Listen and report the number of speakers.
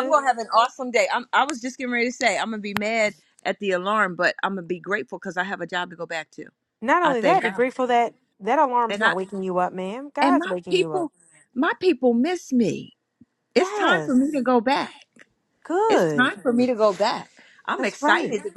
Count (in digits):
2